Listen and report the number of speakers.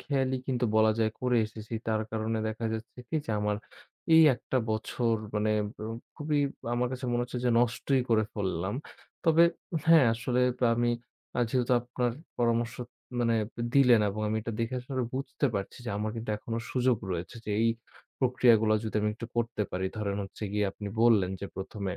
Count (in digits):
1